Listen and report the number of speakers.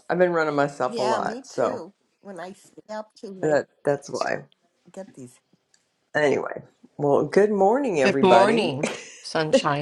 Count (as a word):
three